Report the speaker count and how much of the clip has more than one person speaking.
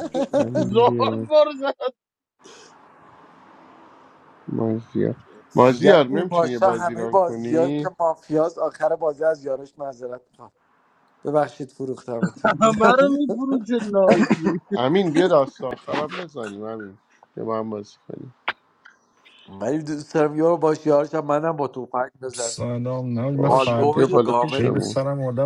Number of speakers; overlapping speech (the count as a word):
four, about 19%